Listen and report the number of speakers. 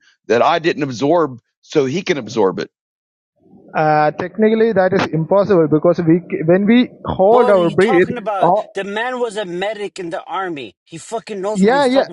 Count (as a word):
three